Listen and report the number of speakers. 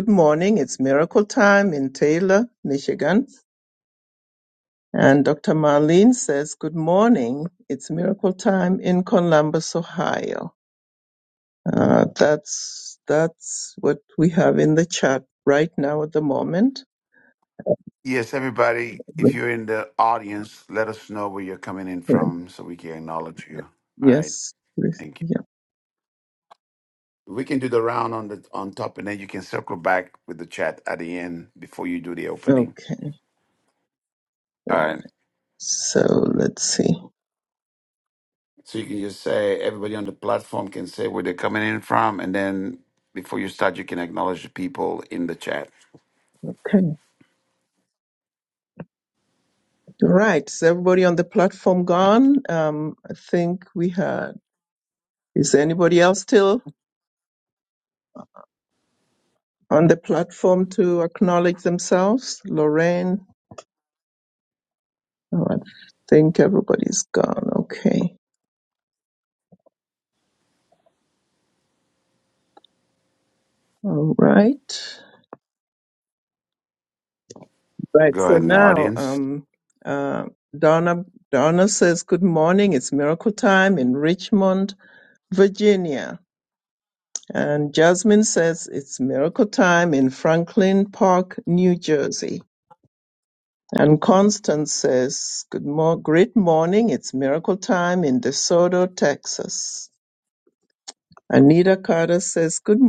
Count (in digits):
2